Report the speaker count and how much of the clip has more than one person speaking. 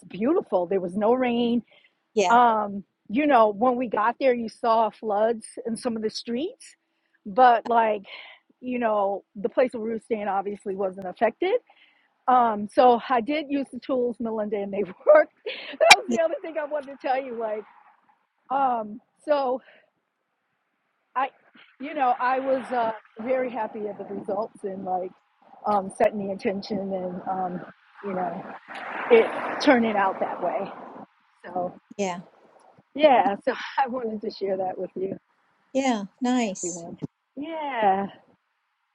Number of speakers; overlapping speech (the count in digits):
2, under 1%